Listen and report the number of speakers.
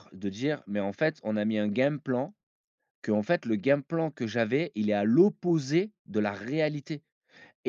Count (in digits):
1